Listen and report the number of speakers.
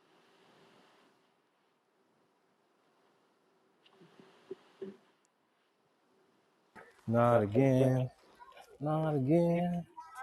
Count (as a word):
one